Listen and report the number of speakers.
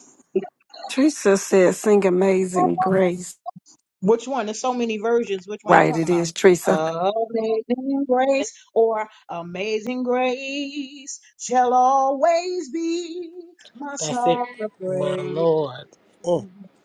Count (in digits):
3